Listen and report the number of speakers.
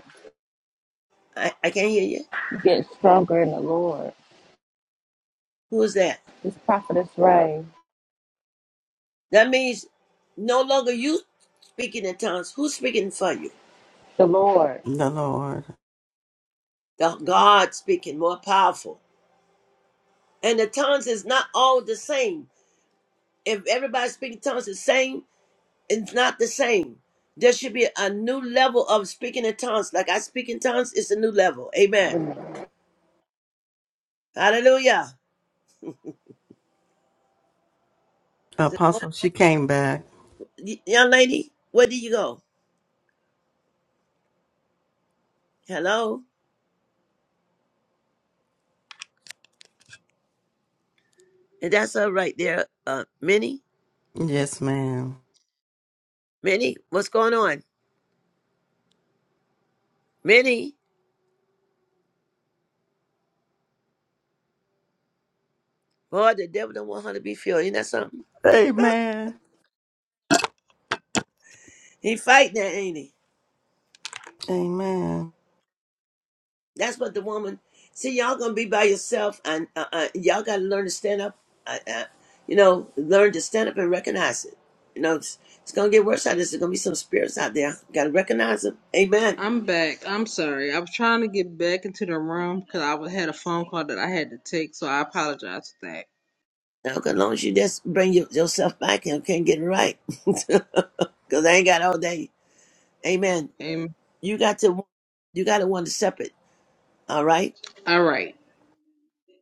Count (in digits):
4